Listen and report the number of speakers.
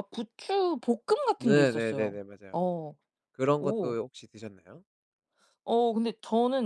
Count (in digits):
2